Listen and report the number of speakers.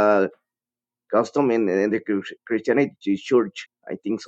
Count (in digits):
1